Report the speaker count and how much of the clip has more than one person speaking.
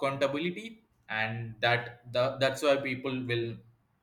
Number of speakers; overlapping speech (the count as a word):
one, no overlap